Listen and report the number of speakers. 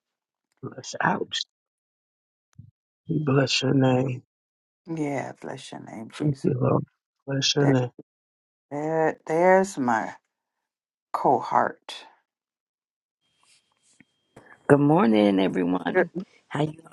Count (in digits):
3